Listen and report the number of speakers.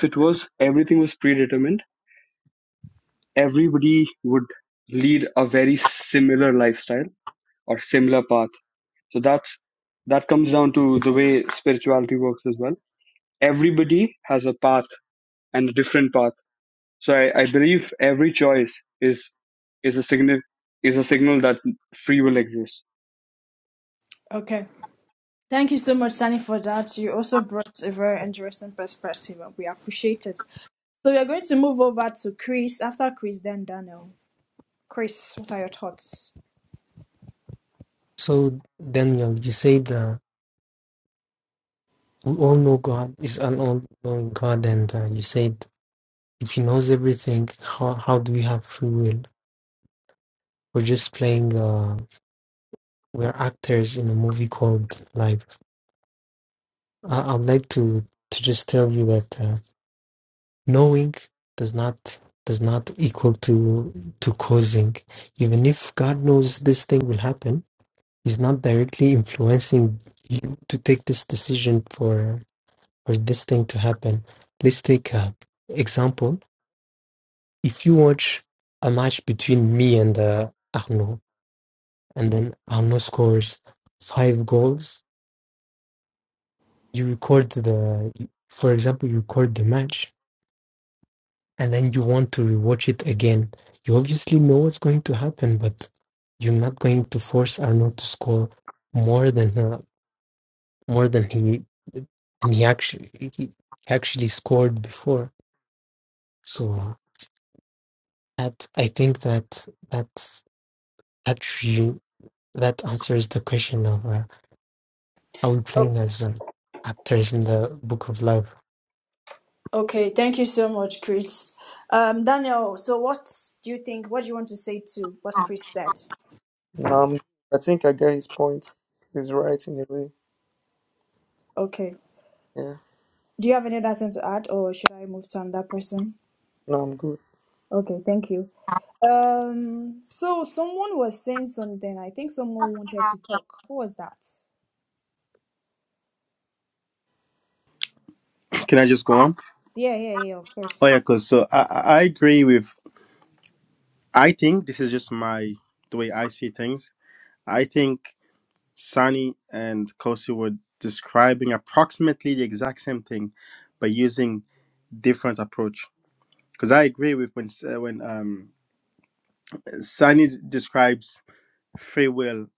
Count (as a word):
five